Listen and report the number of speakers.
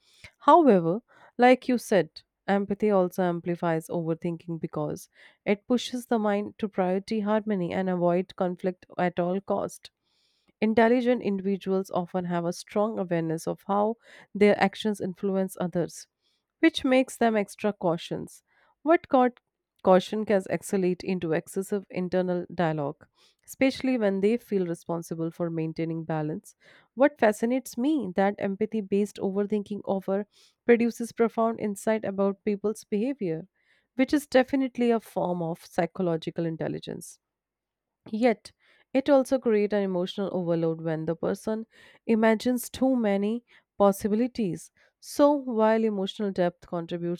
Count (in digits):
1